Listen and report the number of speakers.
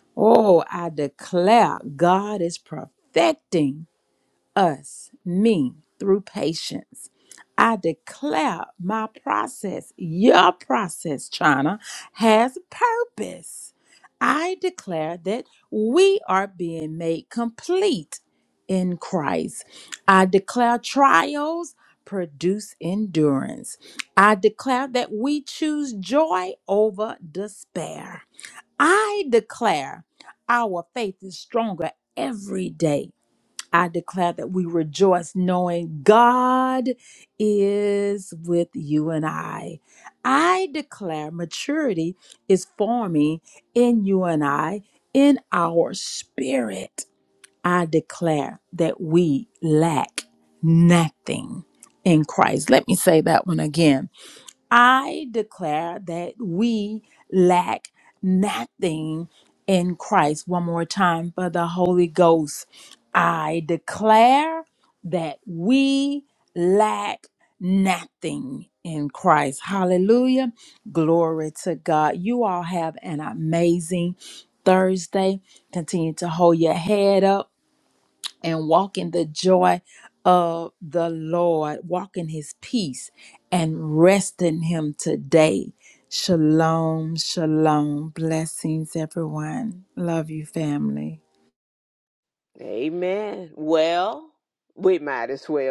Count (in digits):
2